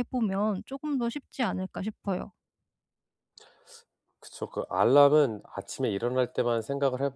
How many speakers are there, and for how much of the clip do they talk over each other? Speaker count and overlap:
2, no overlap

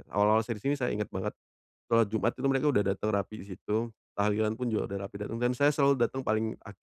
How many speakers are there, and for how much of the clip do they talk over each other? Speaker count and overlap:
1, no overlap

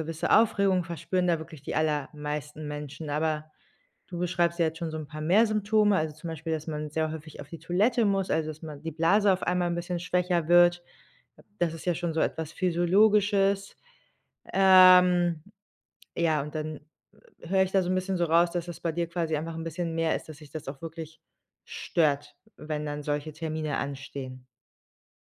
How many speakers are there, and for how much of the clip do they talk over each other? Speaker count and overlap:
1, no overlap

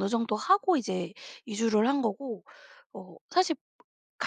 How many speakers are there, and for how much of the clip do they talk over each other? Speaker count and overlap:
1, no overlap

